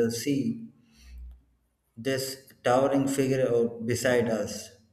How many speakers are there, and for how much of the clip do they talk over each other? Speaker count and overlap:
1, no overlap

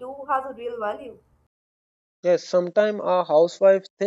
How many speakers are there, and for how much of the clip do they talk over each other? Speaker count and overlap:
2, no overlap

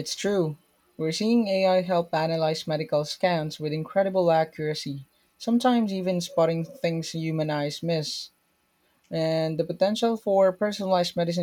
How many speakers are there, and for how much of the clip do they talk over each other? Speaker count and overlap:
1, no overlap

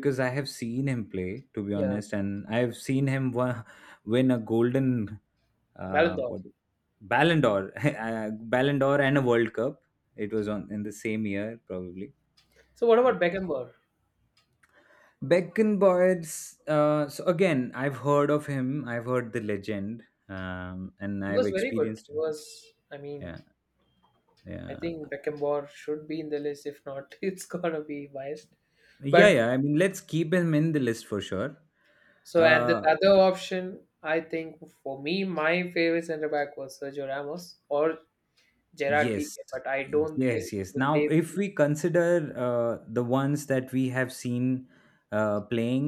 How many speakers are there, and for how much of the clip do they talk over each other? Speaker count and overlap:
2, about 9%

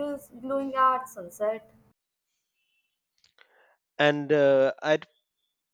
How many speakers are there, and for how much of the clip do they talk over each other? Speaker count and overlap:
2, no overlap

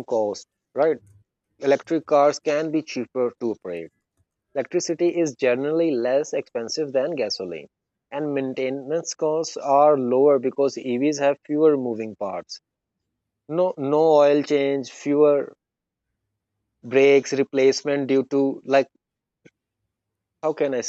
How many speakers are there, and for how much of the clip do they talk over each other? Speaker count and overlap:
1, no overlap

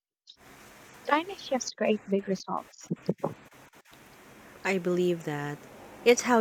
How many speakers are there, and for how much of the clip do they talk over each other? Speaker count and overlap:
2, no overlap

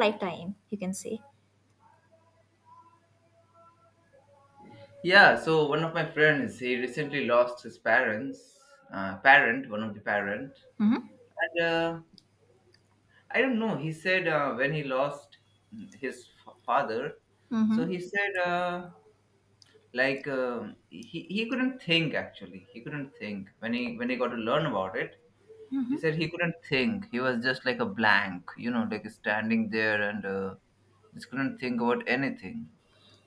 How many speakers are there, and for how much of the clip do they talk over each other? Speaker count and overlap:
2, under 1%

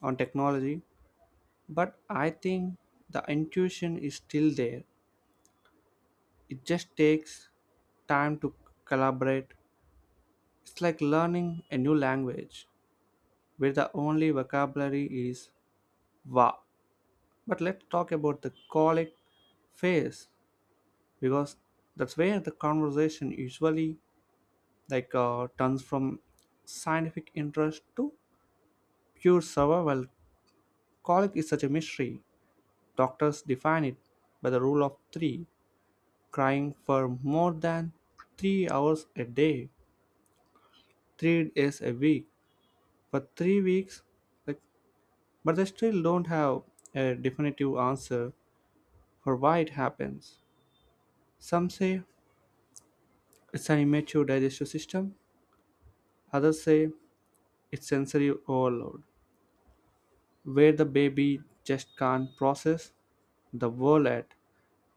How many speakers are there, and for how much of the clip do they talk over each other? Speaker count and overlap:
1, no overlap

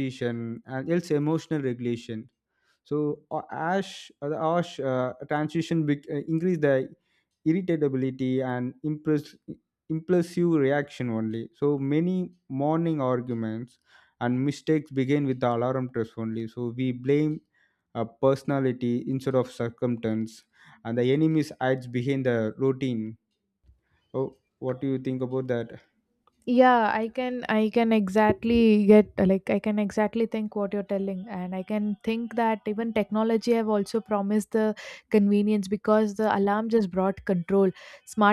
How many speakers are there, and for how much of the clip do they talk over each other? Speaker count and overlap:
2, no overlap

